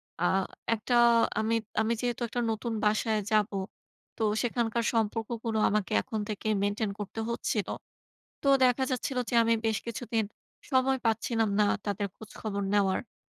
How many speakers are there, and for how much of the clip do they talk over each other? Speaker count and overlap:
1, no overlap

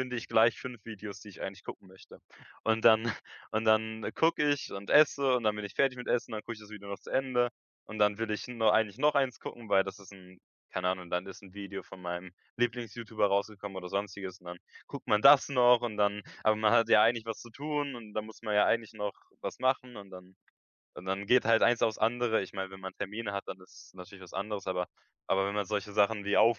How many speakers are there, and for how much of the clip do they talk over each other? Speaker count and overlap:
1, no overlap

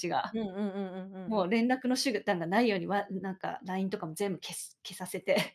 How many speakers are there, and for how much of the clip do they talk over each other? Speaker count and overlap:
2, about 3%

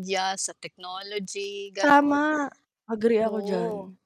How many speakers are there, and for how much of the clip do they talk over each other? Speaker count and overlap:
2, about 24%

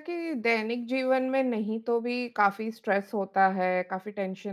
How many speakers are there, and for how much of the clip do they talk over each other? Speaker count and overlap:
1, no overlap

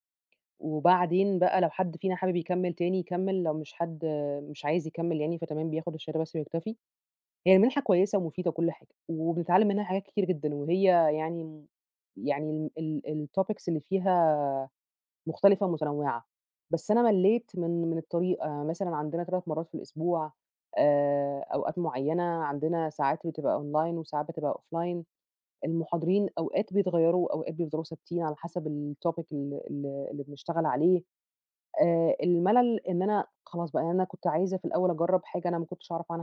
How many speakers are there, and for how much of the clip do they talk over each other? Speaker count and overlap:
1, no overlap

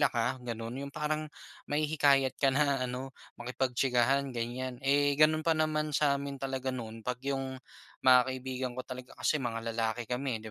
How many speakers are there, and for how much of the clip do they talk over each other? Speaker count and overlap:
1, no overlap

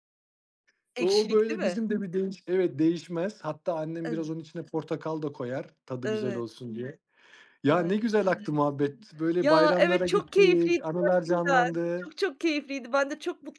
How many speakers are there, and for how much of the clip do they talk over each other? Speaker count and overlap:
2, about 30%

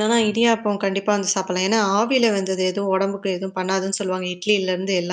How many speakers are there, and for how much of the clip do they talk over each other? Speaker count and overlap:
1, no overlap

